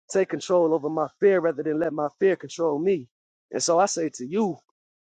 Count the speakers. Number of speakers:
1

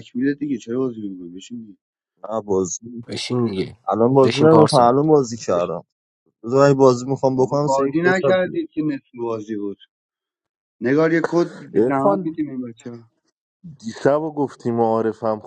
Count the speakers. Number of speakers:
4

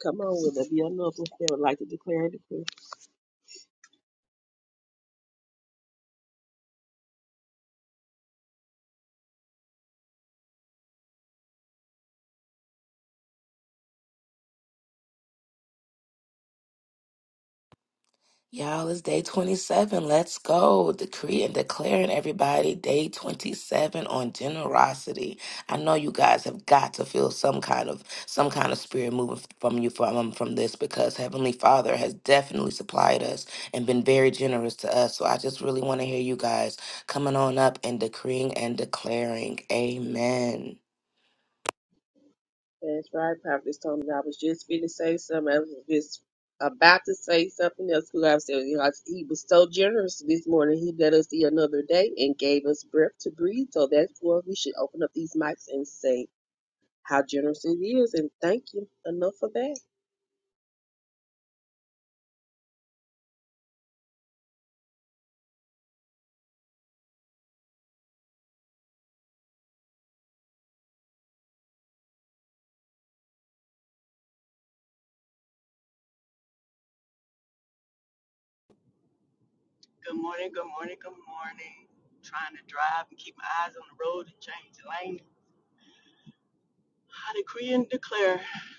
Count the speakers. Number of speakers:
3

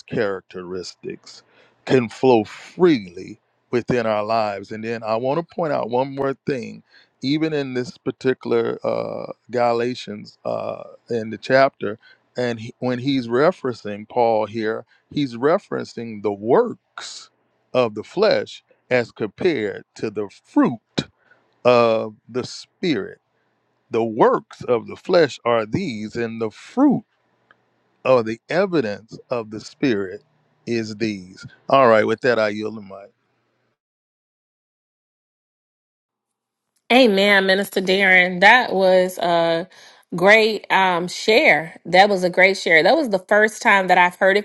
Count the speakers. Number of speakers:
2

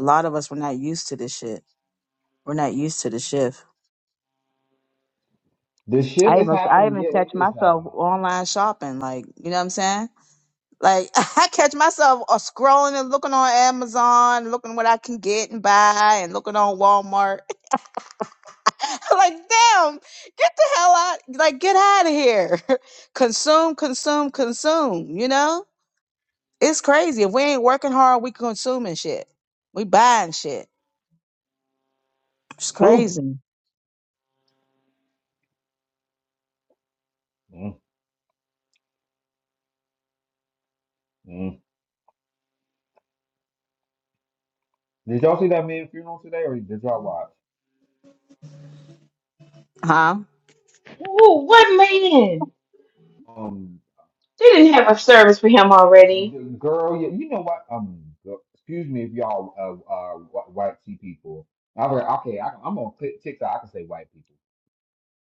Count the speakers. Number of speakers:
3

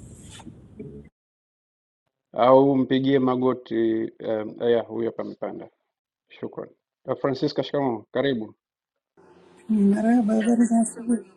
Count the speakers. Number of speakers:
2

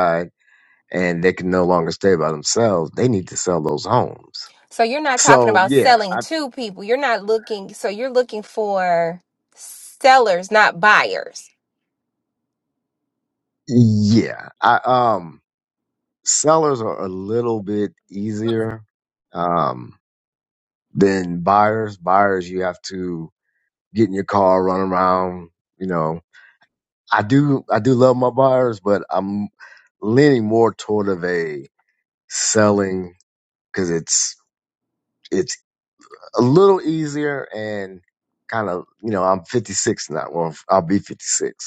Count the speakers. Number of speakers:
2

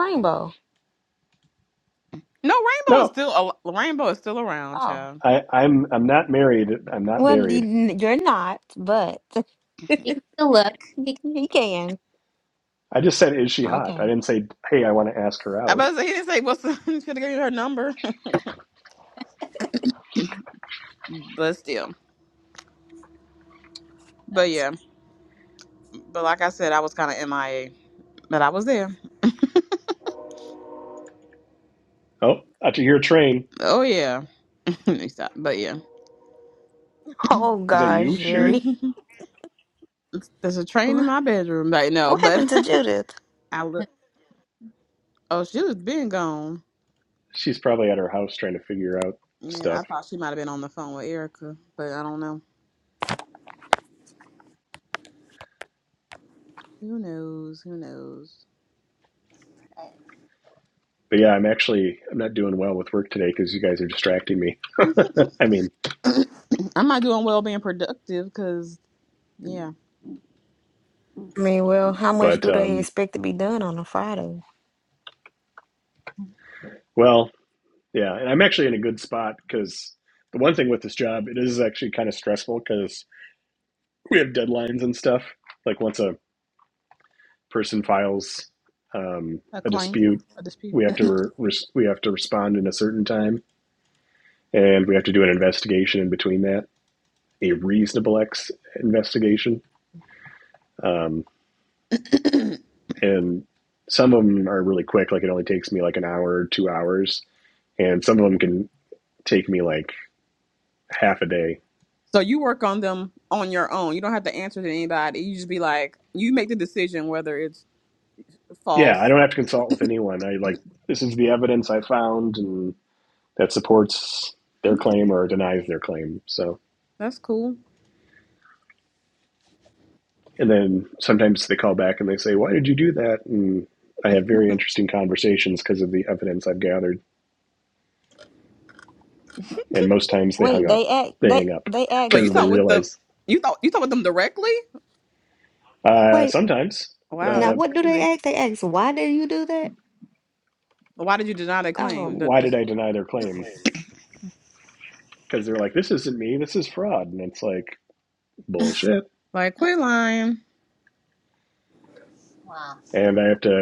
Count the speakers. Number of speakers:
4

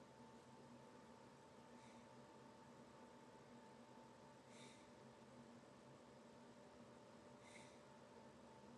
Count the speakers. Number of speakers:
0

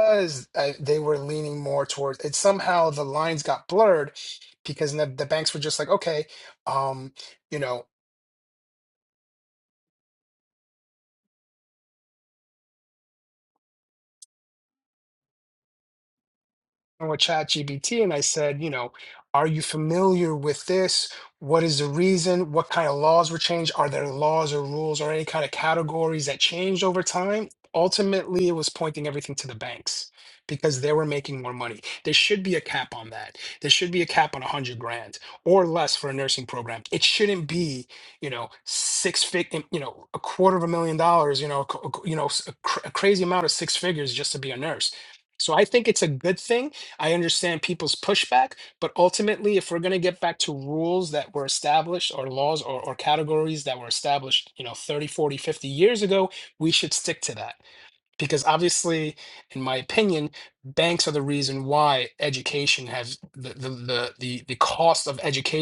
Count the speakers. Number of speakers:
1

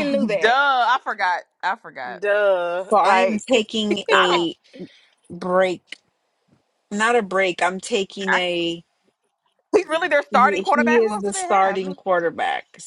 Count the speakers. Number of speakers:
3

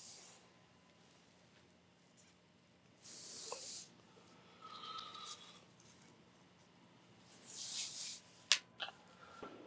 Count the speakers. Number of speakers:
0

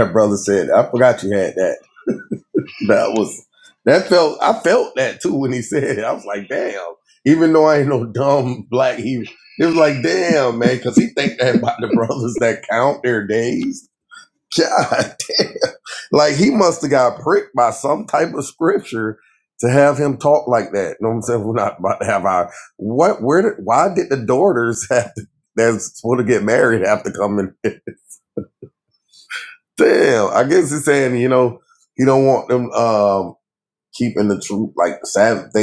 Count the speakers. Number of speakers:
1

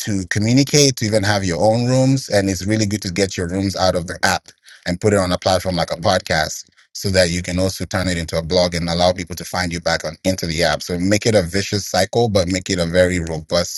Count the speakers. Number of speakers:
1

